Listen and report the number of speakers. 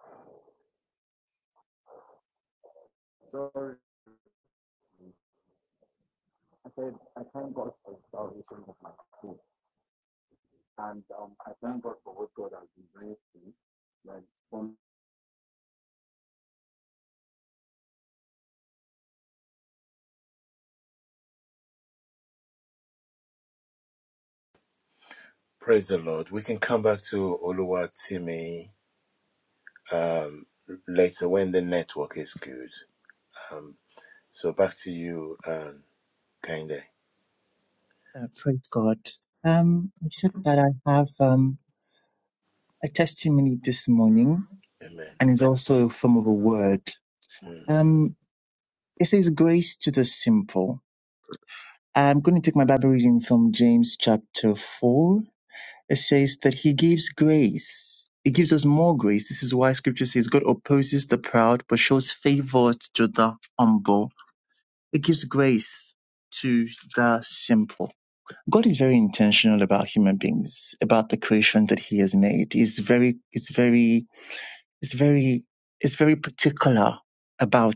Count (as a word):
three